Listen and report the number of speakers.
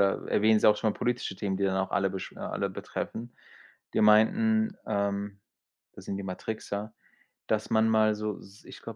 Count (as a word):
one